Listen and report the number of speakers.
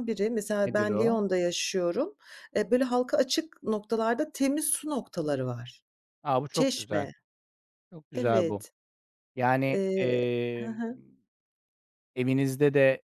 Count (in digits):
2